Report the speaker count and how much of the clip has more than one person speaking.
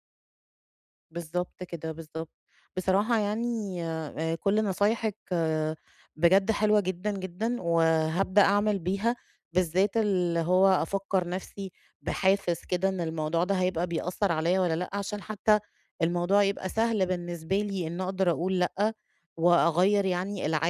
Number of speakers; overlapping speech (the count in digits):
1, no overlap